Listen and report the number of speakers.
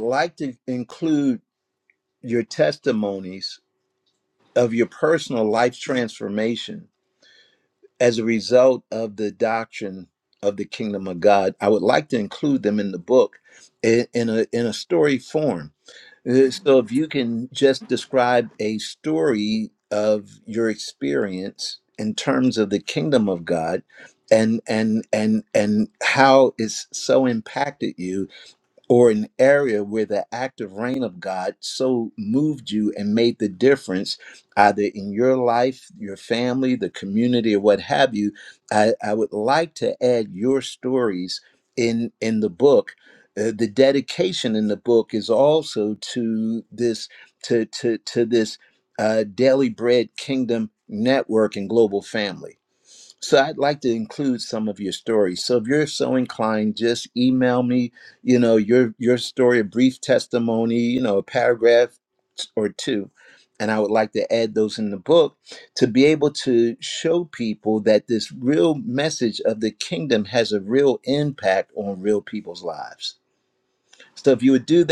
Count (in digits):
1